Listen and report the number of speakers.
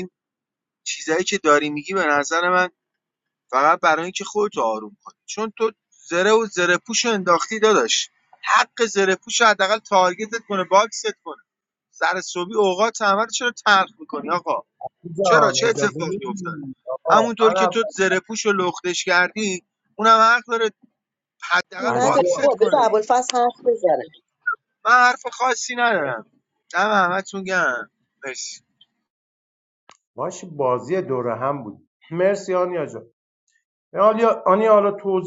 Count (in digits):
3